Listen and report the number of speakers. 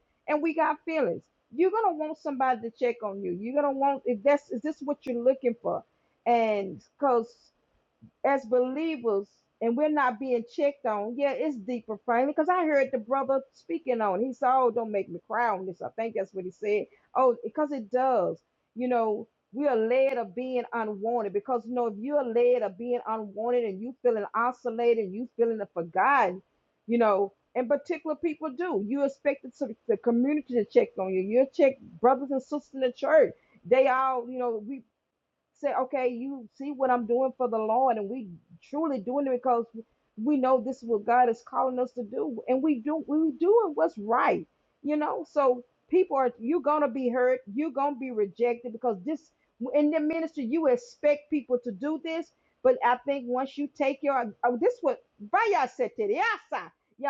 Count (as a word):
one